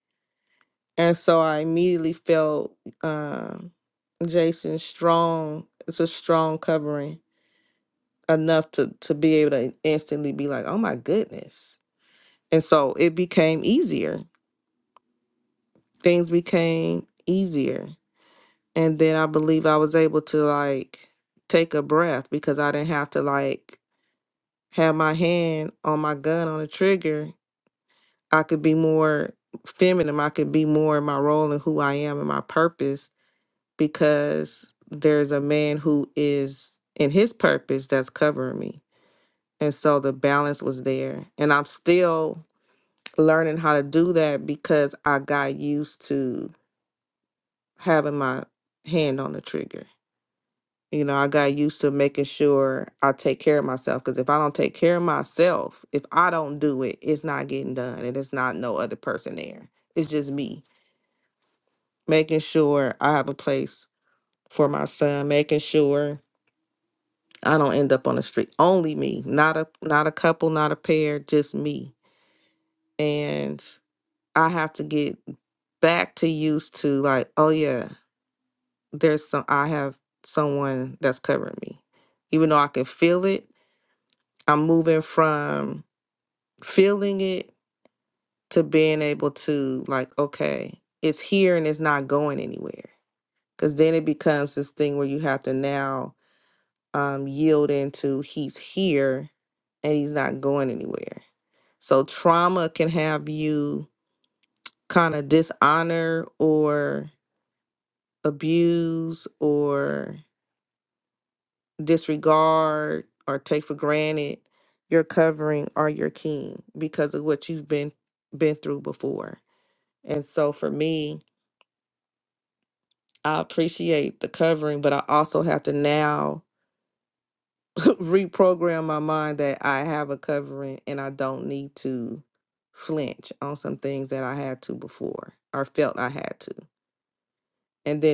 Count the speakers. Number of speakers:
1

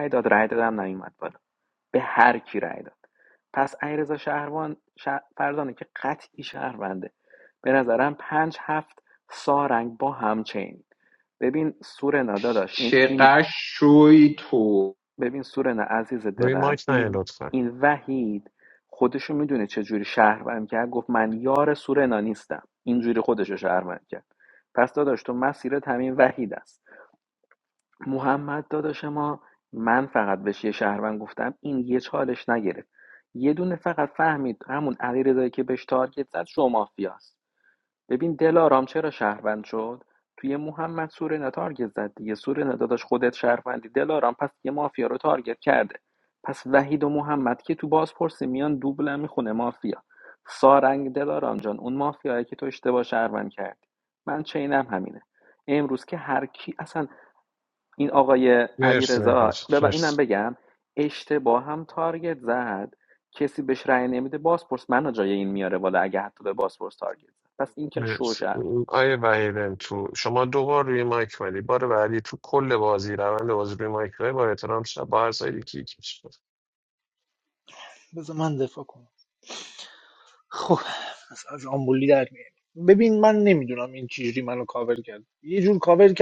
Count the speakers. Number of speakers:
4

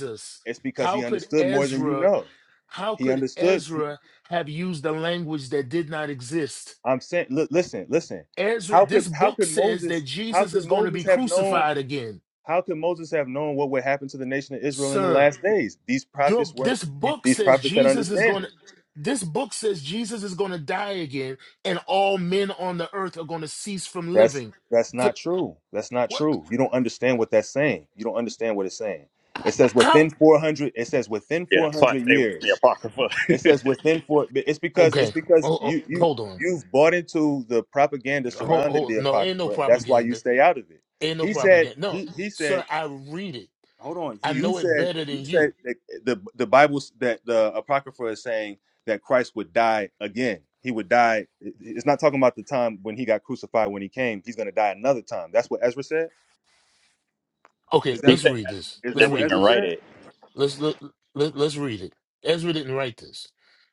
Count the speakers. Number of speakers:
3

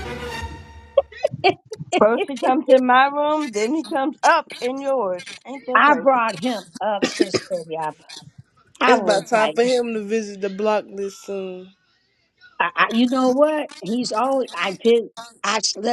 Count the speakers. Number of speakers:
3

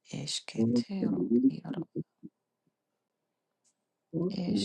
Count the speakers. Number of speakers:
2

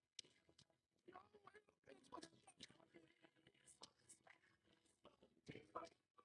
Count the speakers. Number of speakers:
0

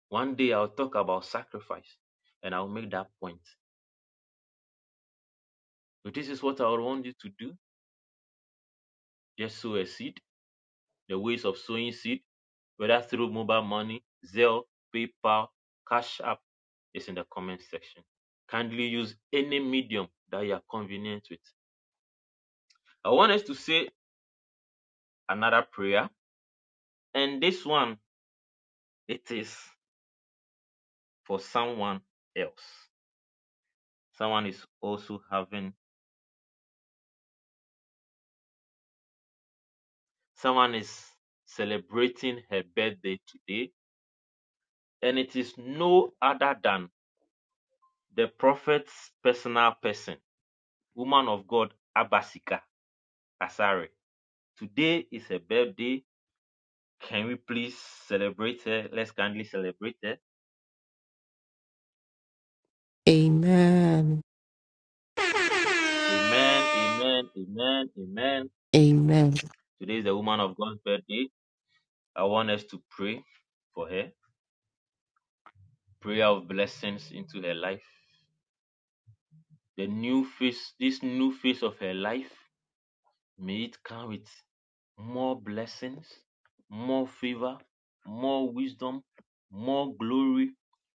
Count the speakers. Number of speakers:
2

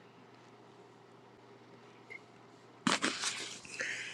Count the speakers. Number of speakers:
0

